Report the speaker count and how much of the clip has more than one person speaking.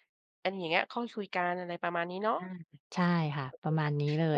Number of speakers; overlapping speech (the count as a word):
two, about 11%